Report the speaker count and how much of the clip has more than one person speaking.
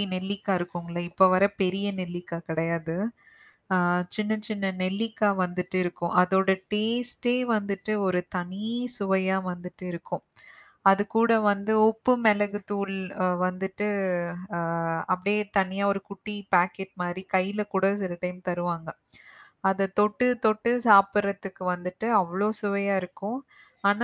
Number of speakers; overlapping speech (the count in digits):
1, no overlap